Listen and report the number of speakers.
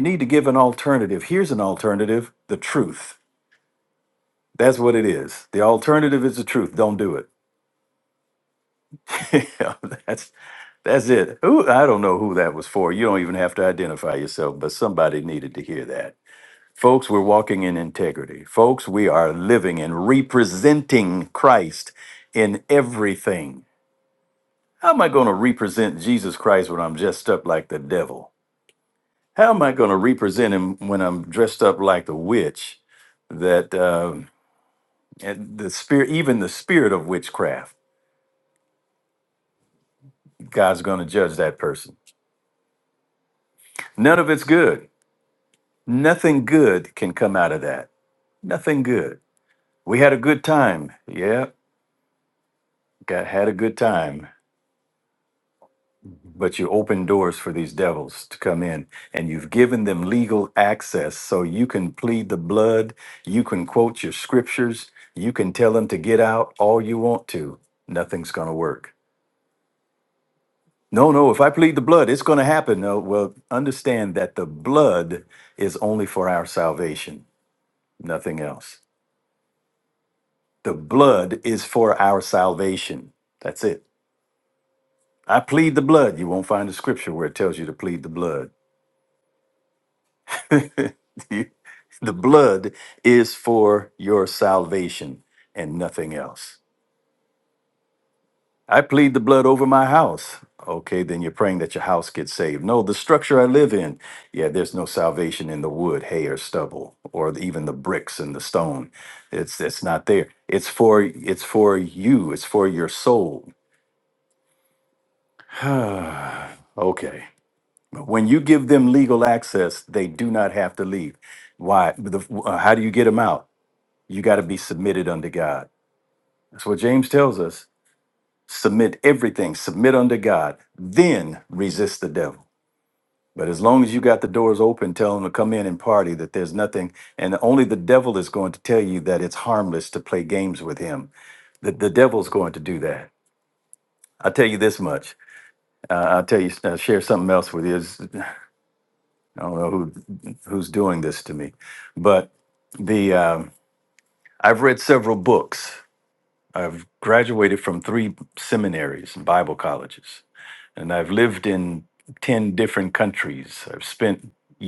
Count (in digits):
1